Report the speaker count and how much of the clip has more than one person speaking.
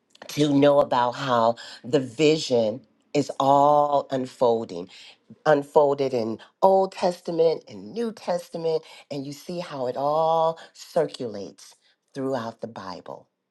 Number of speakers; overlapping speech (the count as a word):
one, no overlap